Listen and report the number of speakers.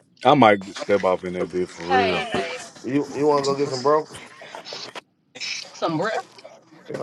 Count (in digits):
3